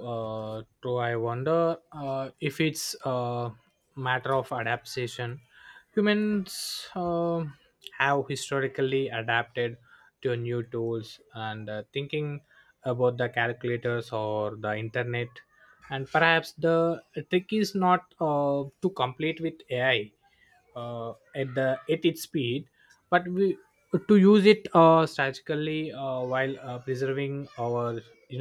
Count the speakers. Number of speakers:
one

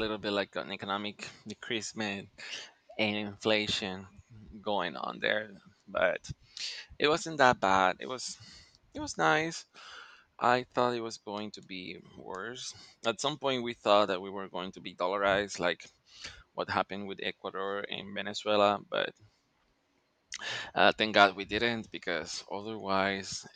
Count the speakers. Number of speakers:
one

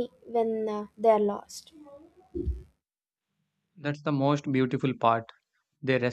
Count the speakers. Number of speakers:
two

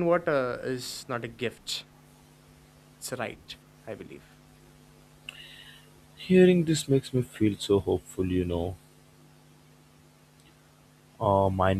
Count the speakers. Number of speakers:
two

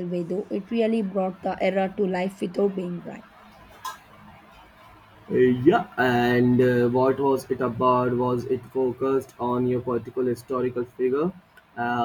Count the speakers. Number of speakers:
two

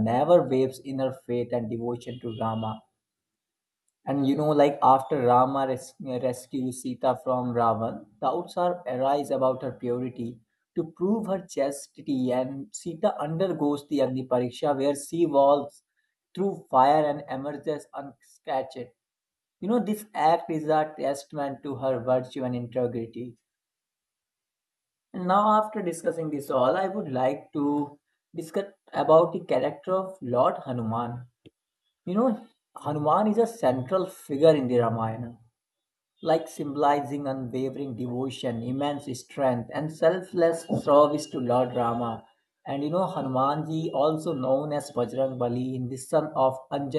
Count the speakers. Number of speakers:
one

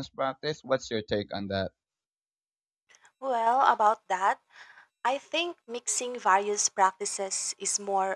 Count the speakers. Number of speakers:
two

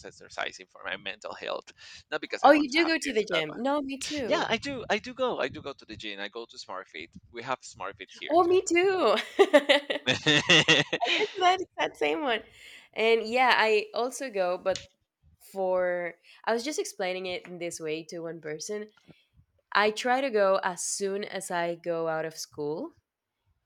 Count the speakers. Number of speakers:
two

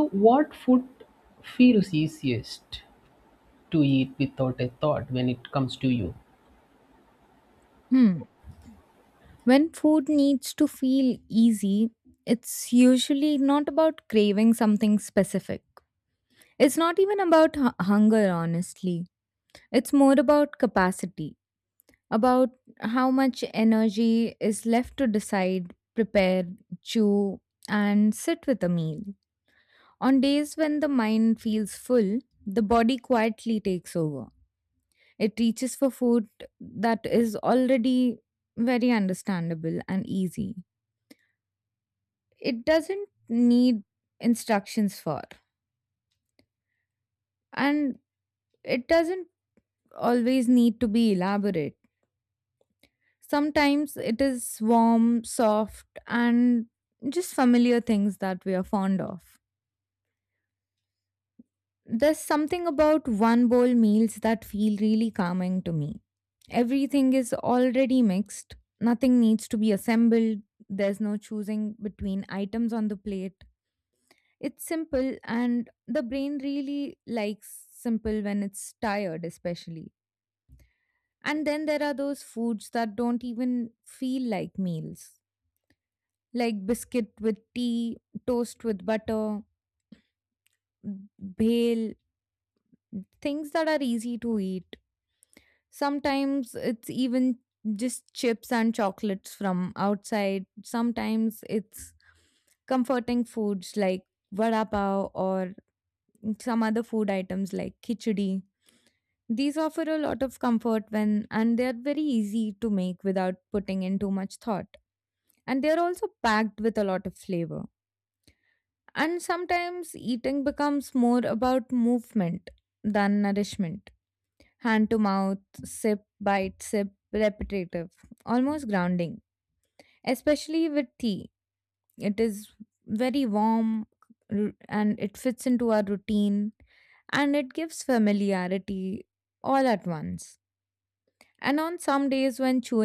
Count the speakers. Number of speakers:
two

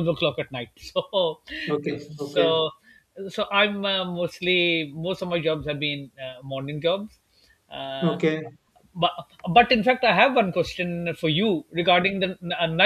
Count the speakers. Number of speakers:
two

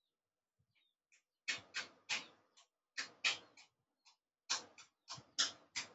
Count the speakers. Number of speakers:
zero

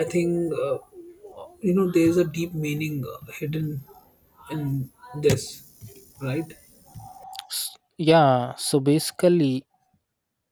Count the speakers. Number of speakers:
two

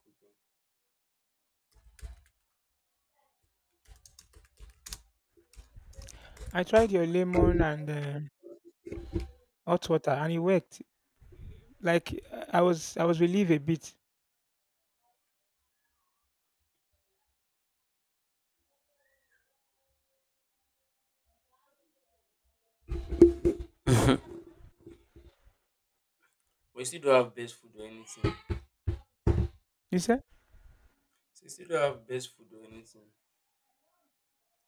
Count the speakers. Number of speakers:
two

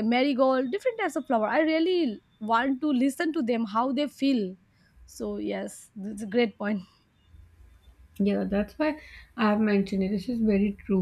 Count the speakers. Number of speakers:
two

